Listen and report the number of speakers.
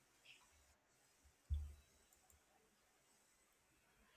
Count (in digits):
0